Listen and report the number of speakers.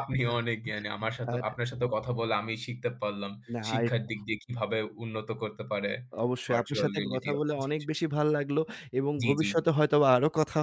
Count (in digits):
2